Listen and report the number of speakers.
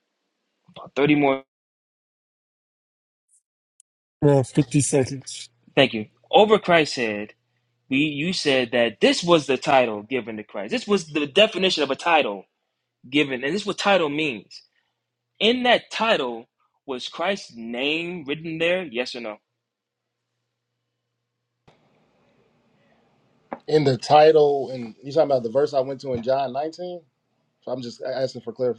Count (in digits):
3